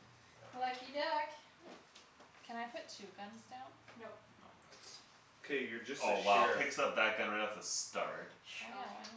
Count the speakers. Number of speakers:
4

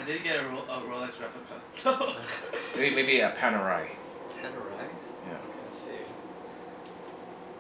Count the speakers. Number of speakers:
3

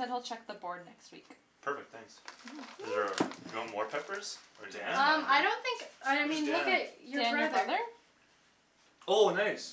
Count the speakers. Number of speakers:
4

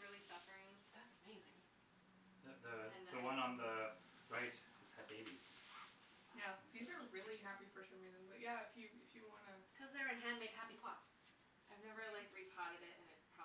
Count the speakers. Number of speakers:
4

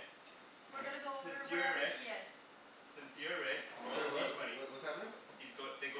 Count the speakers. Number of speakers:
3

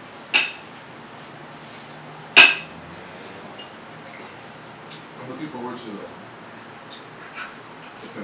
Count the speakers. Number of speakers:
1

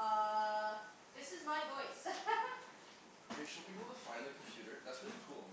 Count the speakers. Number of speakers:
2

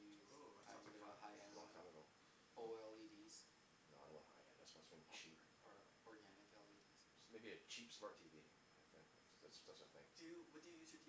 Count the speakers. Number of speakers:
3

